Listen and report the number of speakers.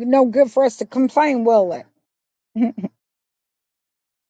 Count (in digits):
1